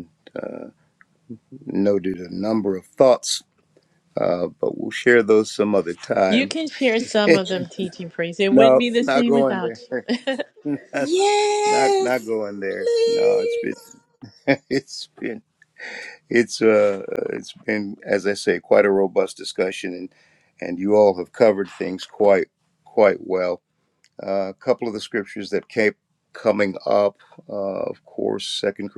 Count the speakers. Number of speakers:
3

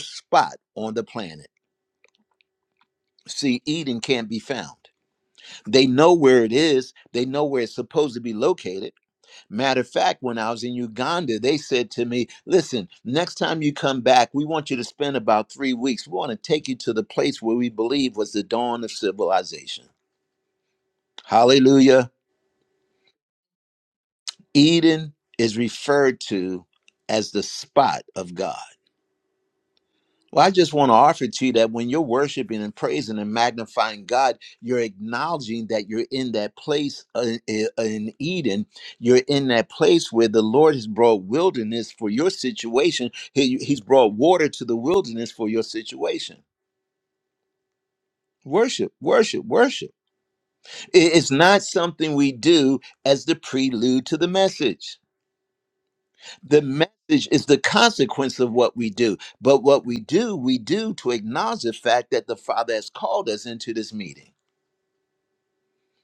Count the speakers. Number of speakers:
1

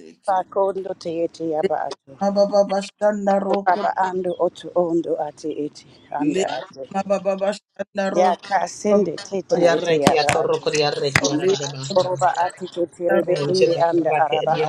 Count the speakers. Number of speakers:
3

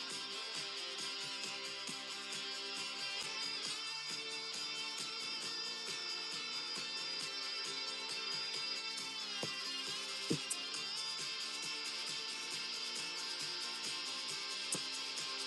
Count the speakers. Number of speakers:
0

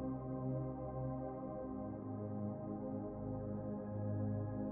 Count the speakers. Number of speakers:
0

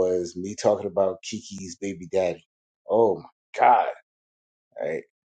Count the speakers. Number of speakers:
1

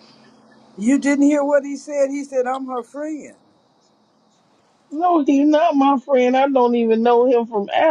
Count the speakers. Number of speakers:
2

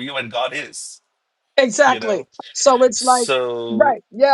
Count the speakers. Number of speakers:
2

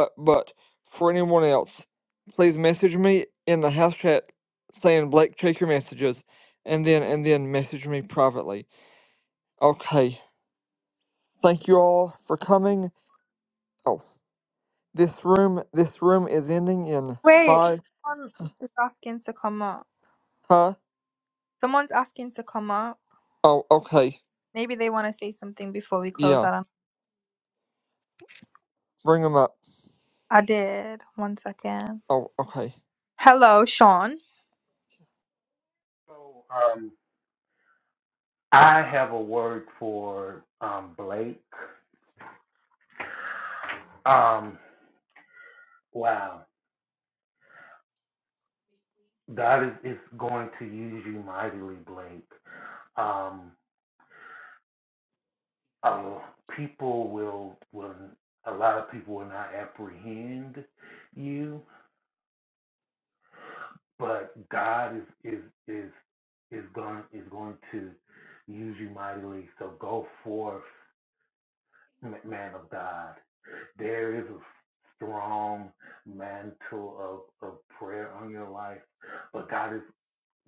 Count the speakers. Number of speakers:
3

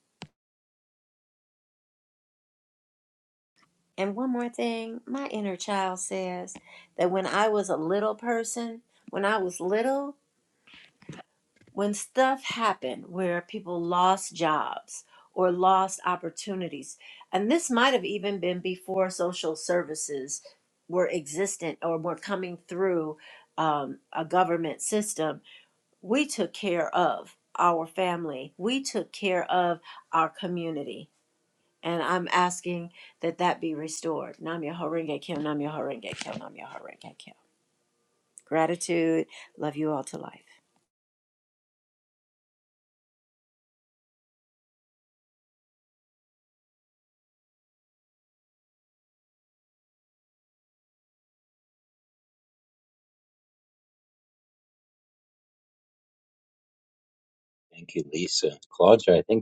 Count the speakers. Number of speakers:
2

